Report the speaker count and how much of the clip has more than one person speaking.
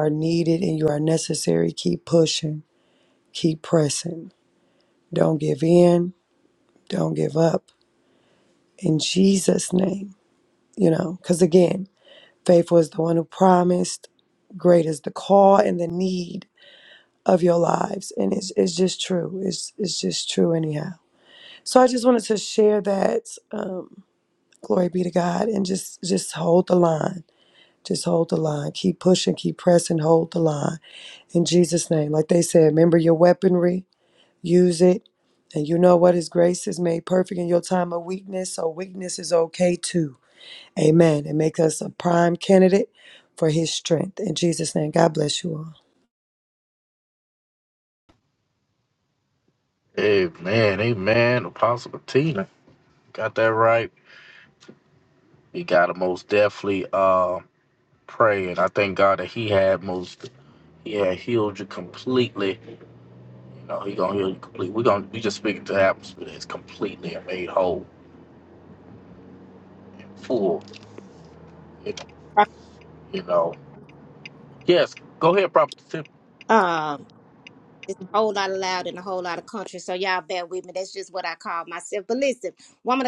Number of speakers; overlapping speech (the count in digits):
3, no overlap